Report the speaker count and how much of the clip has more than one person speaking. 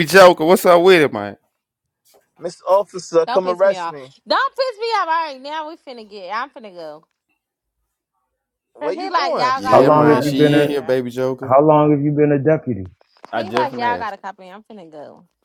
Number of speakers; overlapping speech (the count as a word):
four, about 23%